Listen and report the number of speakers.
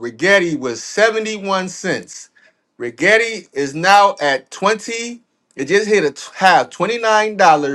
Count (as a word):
one